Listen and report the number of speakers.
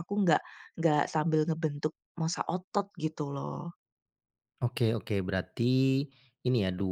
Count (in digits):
2